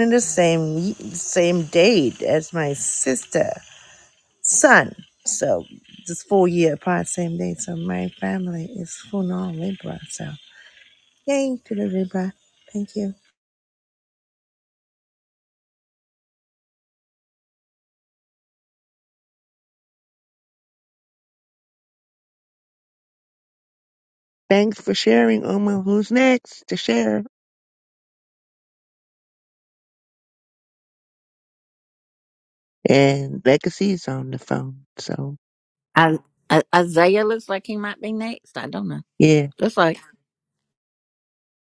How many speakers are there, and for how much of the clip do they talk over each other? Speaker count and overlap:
three, no overlap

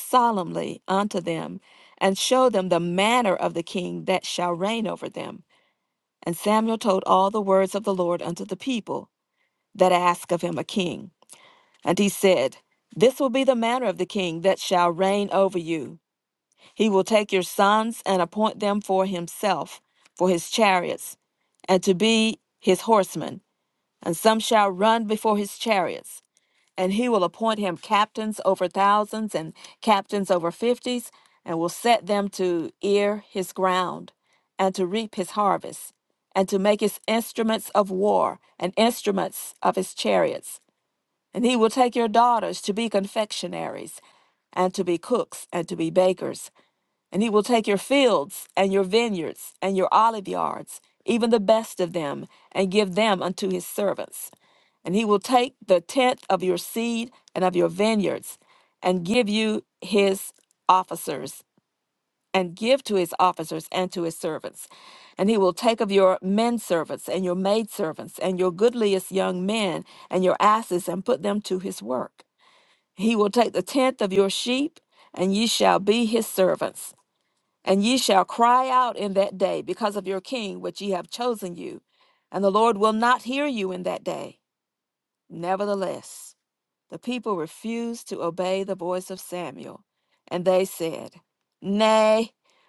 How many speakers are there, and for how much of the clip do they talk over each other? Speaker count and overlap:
one, no overlap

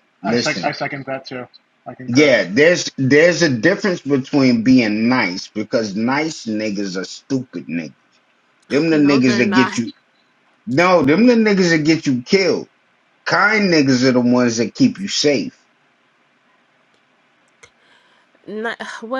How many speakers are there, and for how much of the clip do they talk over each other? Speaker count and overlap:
three, about 8%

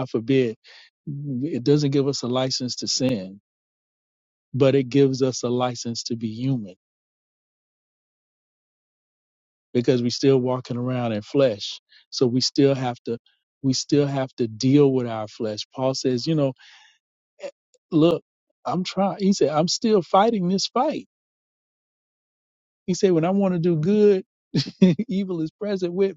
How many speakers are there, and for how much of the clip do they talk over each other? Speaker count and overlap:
one, no overlap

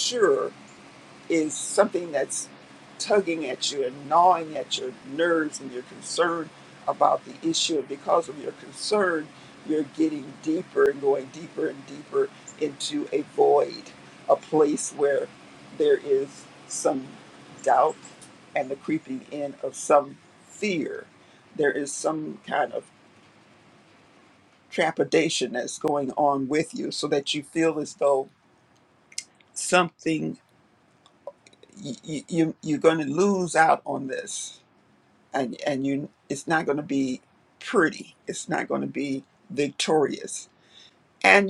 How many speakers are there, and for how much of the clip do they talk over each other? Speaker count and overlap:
one, no overlap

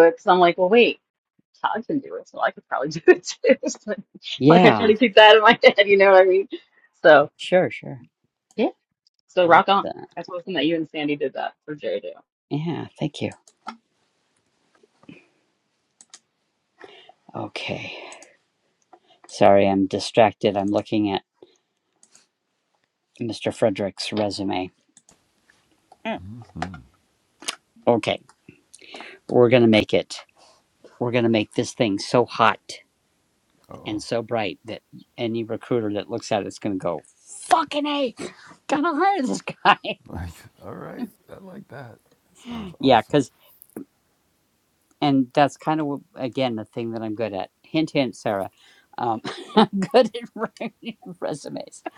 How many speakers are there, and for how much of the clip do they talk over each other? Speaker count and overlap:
three, about 2%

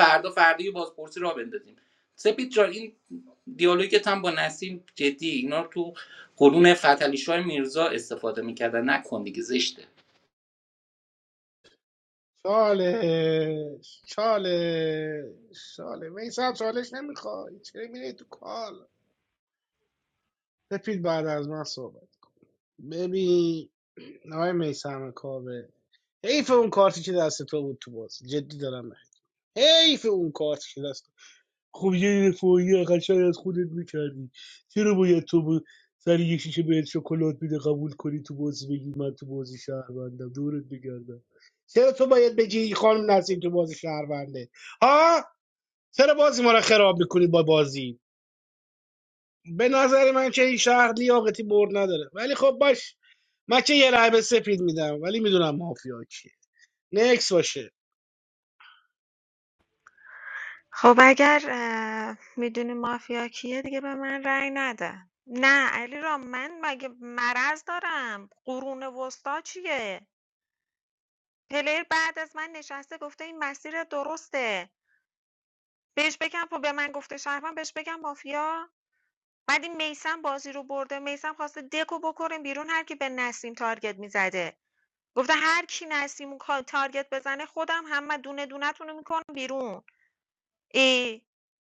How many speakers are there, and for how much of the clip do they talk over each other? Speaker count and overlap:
three, no overlap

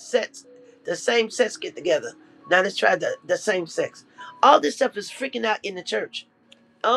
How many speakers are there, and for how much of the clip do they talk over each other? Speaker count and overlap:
one, no overlap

